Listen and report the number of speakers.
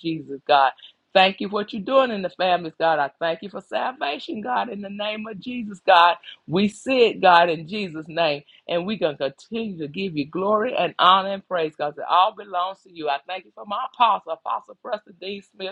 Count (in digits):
1